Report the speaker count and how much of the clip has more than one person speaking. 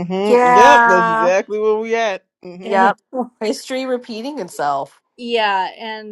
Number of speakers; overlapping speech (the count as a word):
three, about 21%